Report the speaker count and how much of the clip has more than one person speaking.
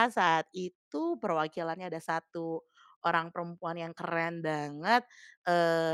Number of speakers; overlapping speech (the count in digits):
1, no overlap